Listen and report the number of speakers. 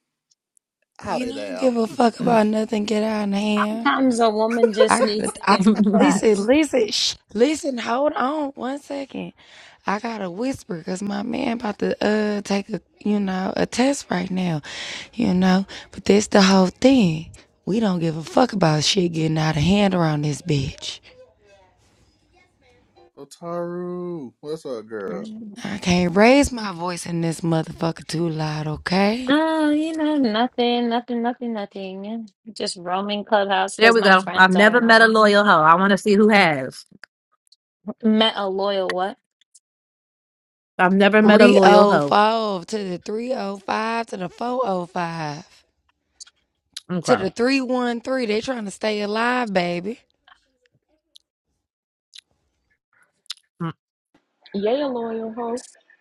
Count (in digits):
5